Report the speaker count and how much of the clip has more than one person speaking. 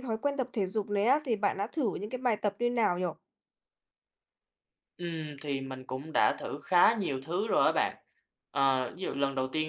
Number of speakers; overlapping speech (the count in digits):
2, no overlap